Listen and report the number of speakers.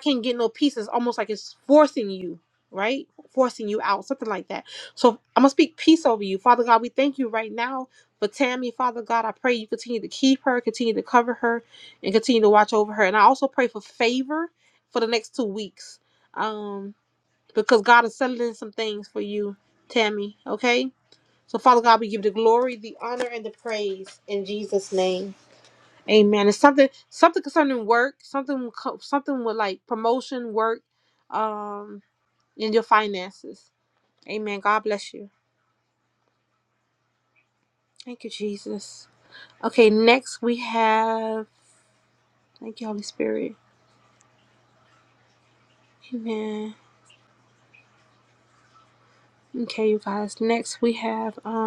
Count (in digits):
1